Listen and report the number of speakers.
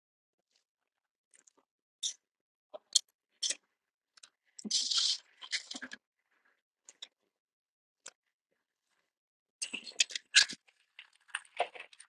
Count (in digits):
0